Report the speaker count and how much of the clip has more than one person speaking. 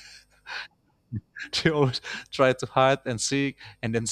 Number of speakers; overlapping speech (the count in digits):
1, no overlap